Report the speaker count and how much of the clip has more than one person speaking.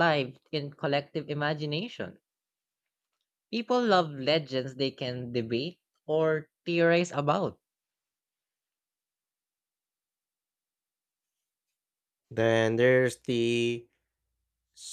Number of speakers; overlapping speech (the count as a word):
two, no overlap